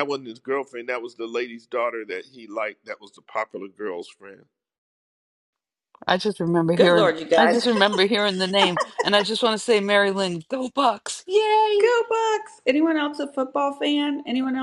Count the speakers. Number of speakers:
3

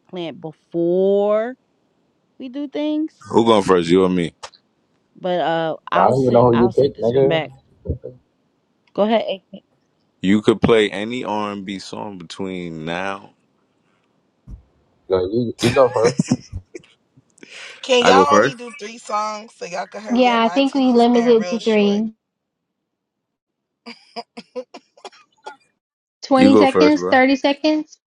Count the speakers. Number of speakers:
5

